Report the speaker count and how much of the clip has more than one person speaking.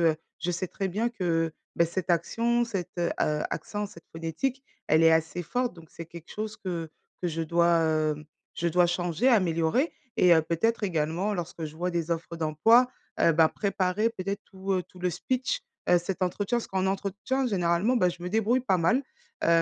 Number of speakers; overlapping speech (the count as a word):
one, no overlap